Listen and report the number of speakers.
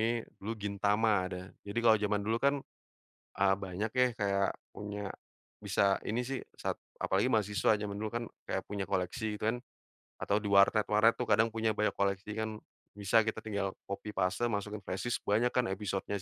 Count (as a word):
one